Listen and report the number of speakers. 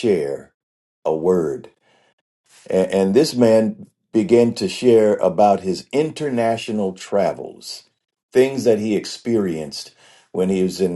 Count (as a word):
one